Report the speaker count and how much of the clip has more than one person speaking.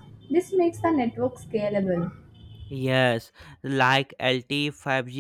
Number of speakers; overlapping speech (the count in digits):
2, no overlap